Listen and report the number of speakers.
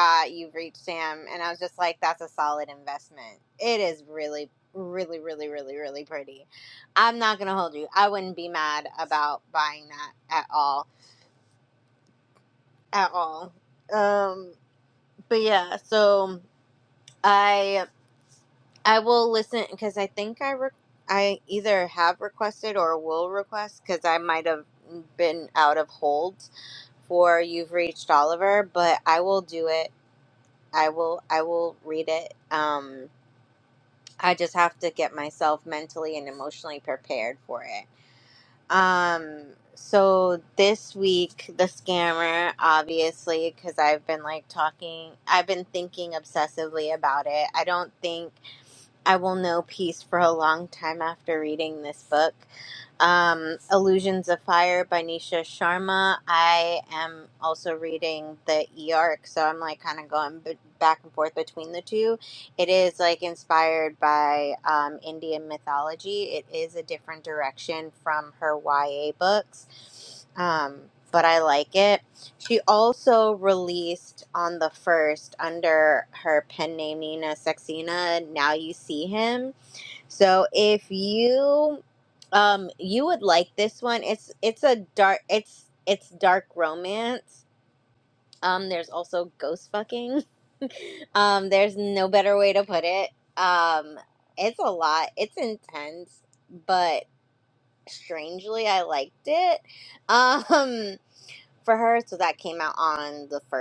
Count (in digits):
1